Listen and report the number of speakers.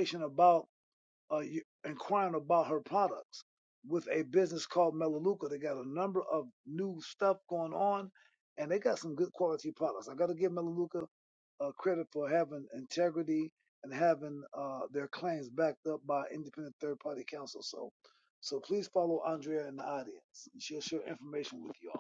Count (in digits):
1